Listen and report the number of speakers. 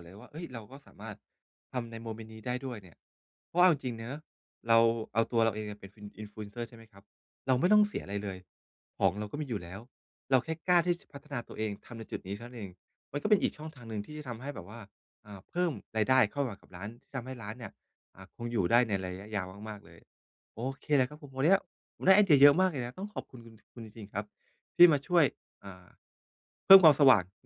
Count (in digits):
1